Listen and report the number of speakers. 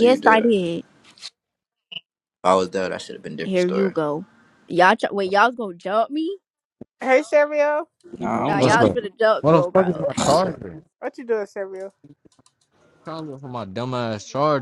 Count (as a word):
four